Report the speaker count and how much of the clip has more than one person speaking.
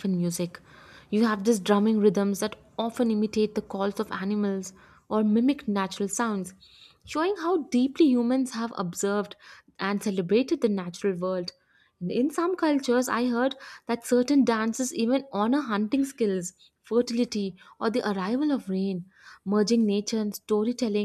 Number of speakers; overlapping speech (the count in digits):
1, no overlap